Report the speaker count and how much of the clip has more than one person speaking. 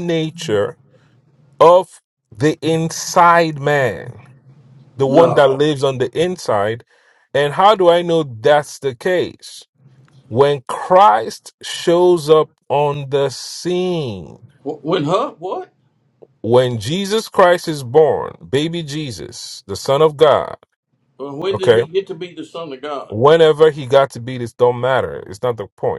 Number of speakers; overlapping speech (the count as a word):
two, about 4%